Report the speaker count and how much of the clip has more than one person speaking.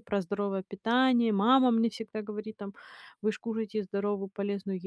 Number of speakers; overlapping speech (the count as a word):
one, no overlap